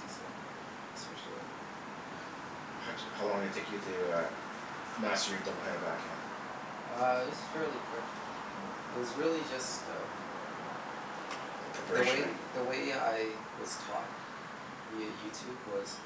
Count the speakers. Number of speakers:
two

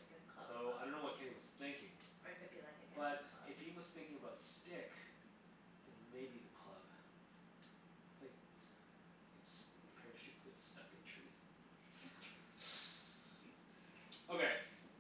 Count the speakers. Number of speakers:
two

